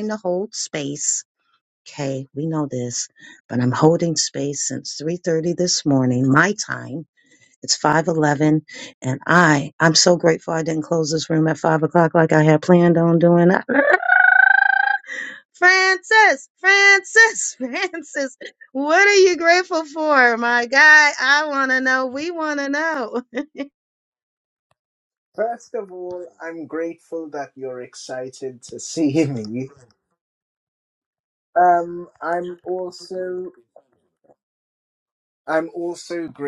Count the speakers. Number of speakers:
2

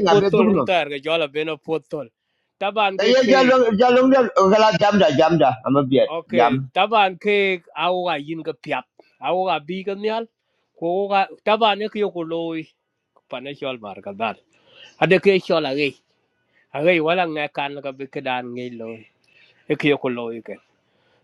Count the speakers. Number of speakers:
2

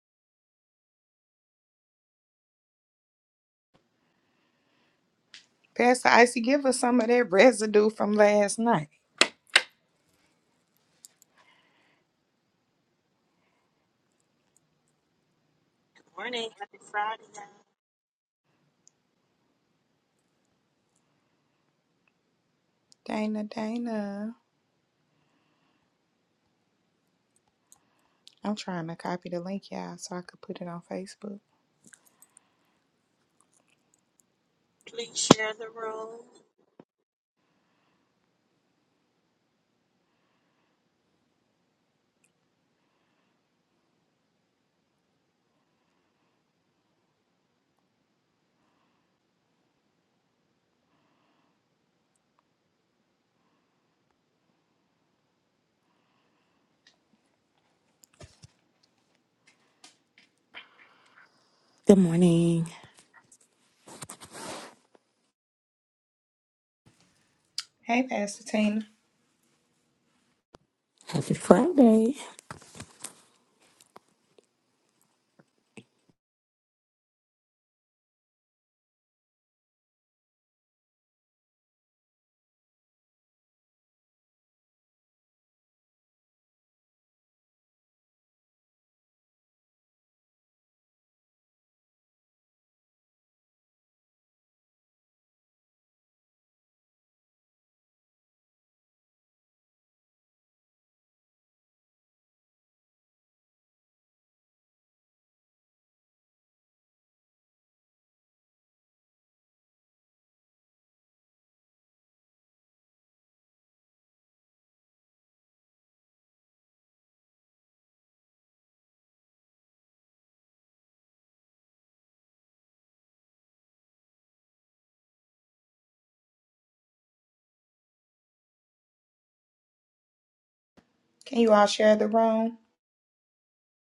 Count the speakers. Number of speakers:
3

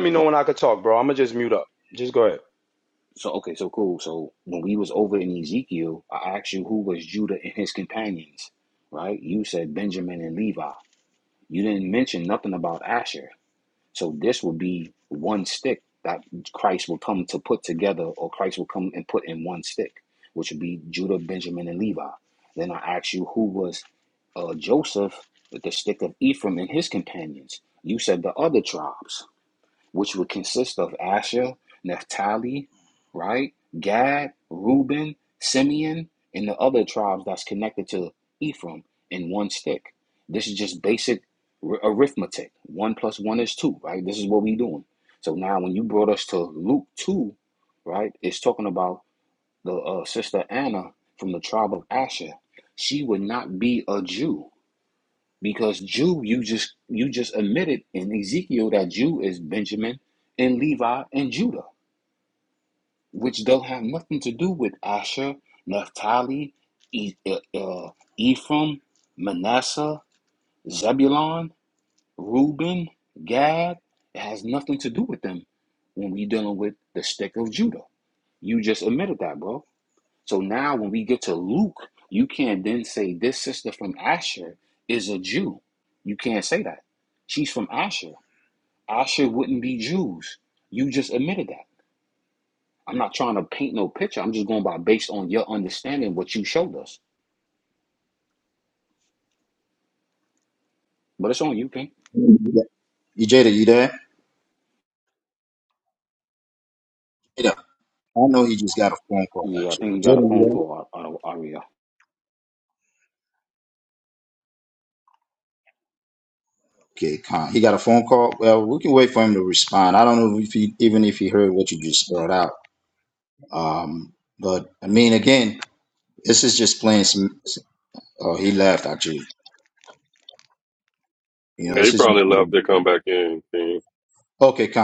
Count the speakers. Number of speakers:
4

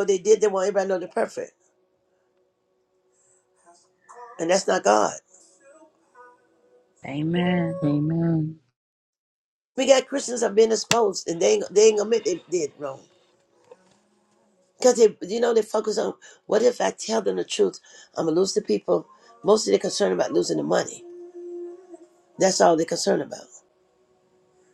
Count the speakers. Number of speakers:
2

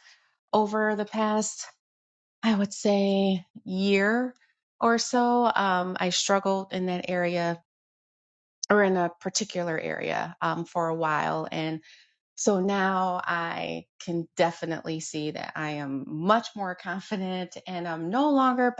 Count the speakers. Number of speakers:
1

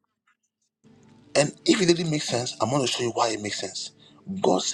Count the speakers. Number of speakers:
1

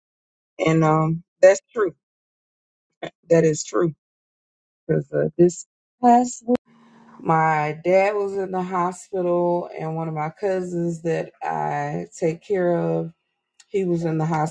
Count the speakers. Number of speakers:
1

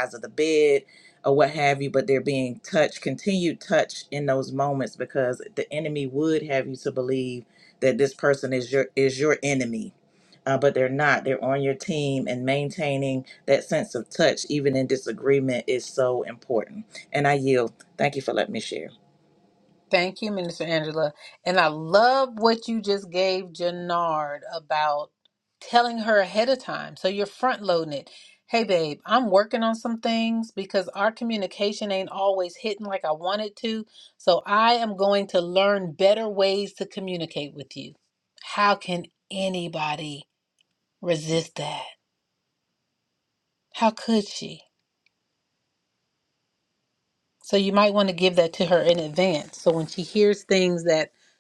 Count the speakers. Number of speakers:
2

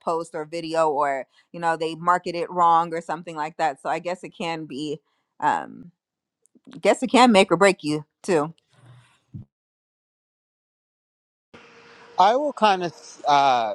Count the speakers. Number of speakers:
2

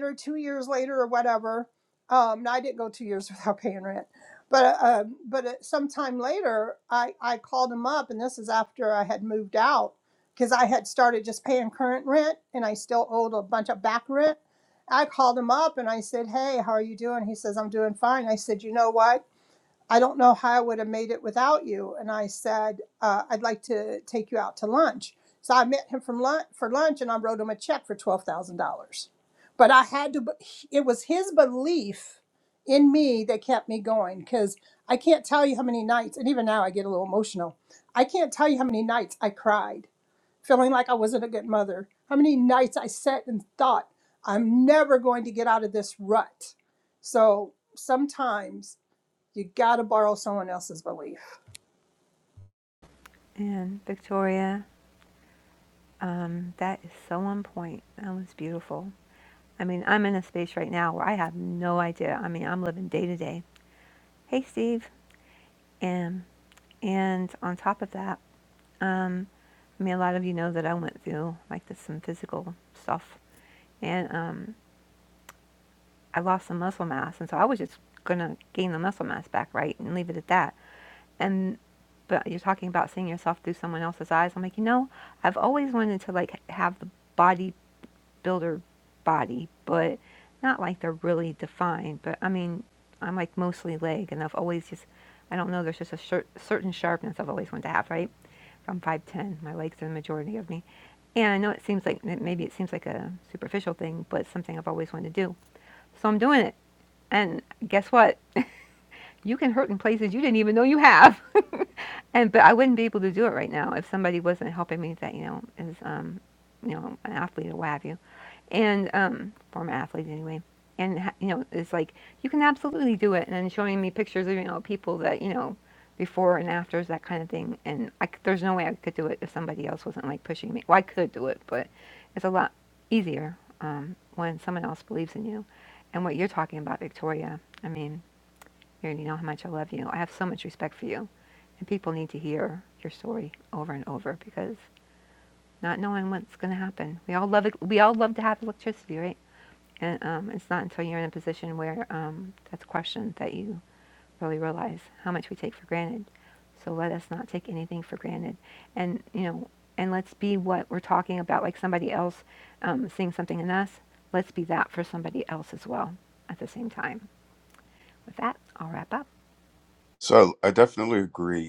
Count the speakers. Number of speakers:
3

